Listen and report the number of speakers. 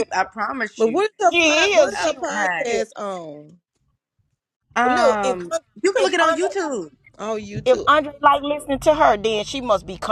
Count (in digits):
3